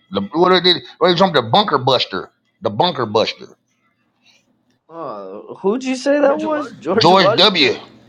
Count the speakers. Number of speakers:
2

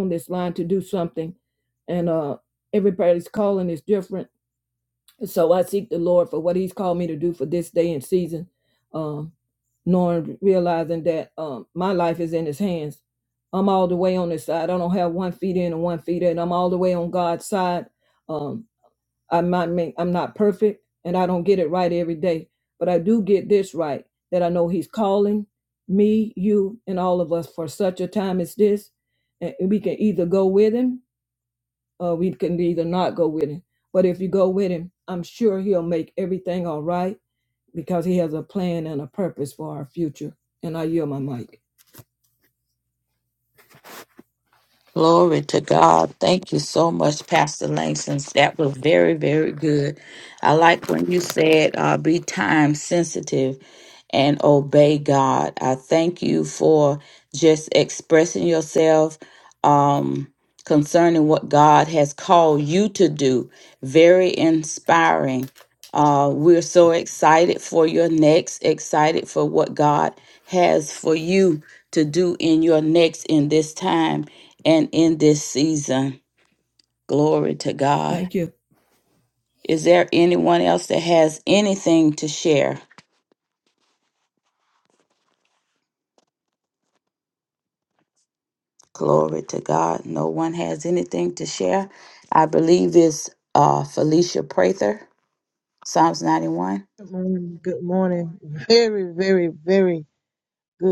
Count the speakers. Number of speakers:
3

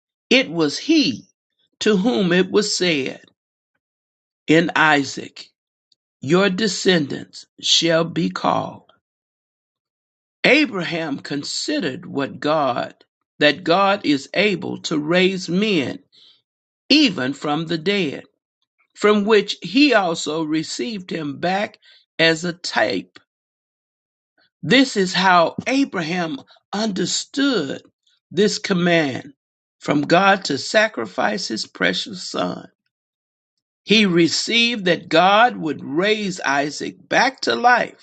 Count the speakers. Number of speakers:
1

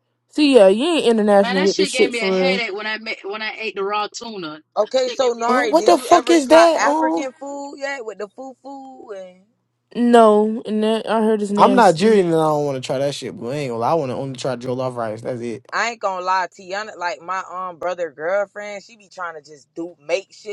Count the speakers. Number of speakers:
4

